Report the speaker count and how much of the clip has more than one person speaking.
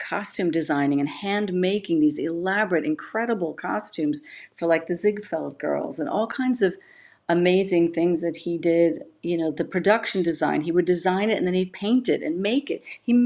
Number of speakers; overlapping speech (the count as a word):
one, no overlap